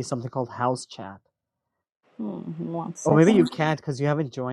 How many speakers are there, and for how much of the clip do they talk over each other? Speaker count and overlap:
two, about 11%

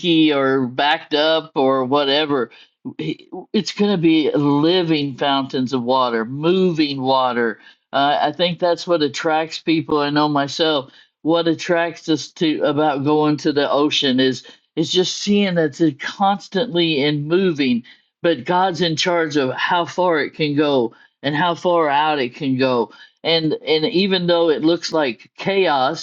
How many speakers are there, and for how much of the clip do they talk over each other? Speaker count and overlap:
one, no overlap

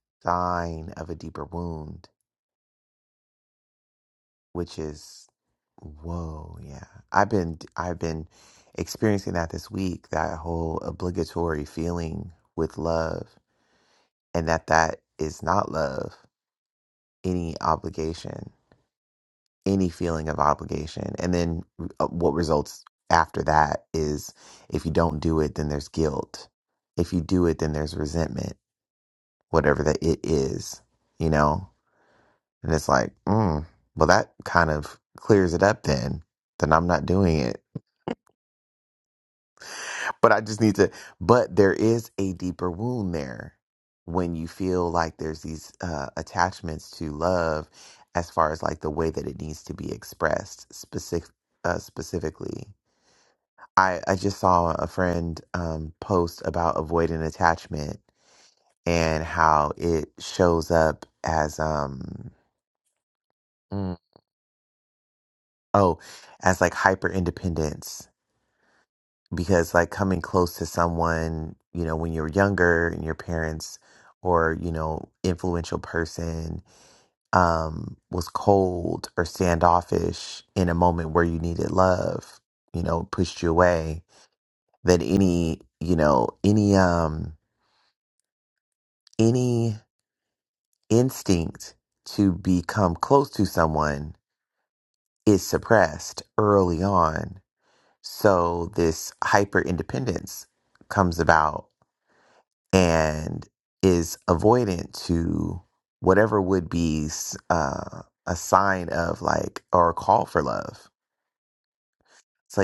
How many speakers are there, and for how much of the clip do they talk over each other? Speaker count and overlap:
one, no overlap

